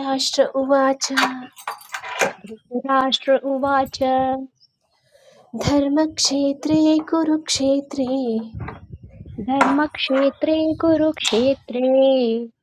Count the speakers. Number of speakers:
2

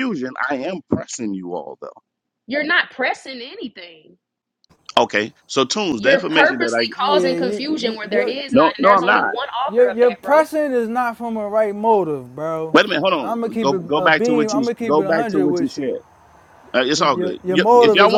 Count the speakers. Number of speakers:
3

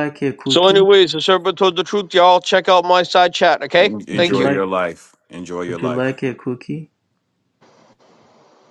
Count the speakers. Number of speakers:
3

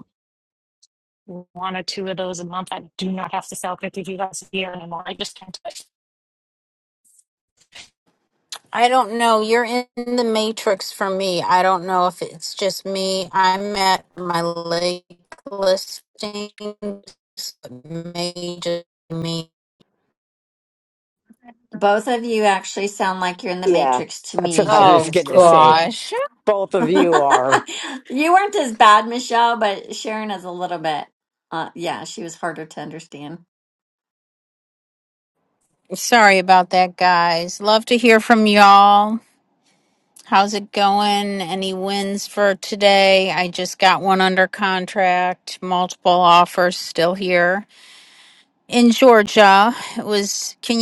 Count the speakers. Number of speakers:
4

